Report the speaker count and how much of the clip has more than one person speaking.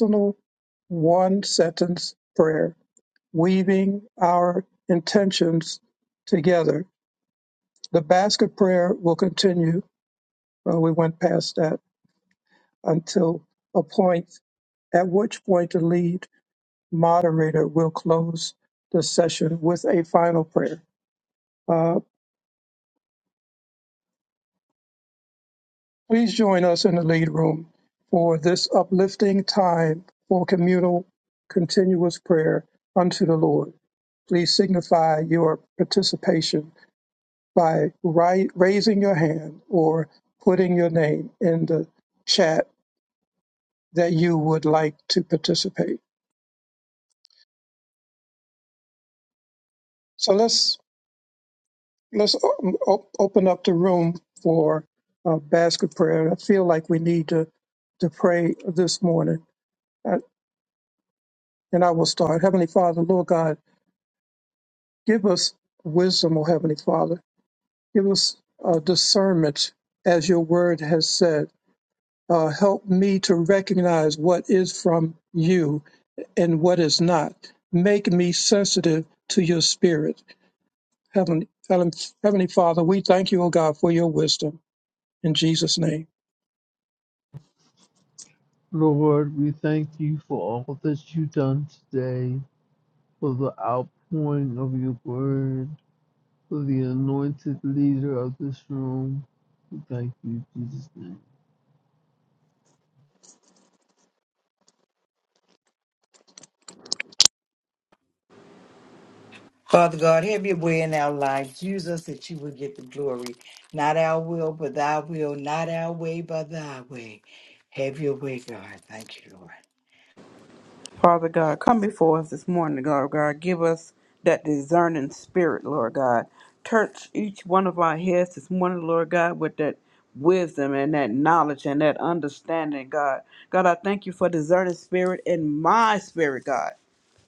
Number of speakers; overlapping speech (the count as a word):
four, no overlap